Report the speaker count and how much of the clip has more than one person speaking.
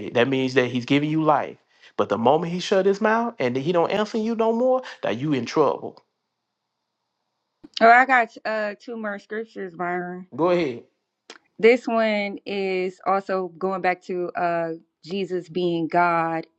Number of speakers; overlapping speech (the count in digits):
2, no overlap